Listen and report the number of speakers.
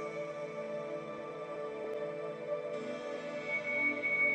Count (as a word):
zero